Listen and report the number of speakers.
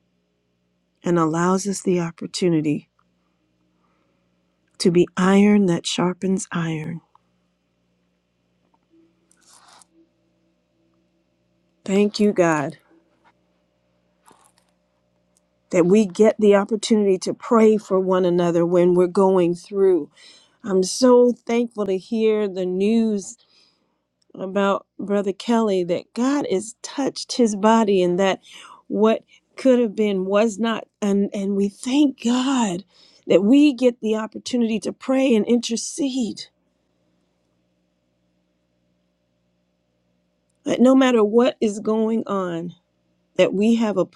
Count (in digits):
1